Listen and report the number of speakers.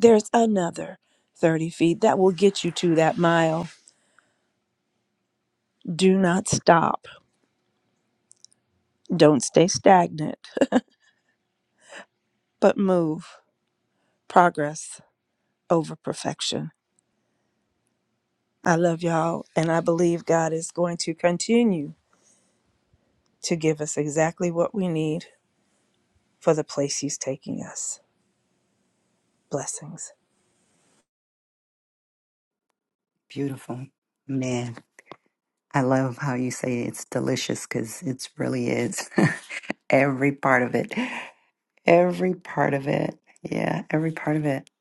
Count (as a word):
two